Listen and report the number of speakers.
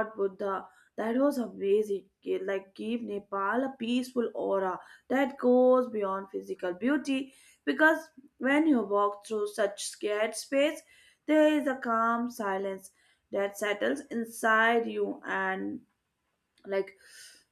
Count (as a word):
one